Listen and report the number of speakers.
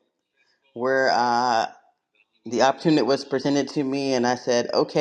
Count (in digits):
1